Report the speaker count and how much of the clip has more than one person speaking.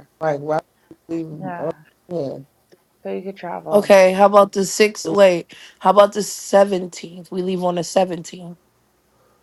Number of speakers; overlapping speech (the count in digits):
3, about 6%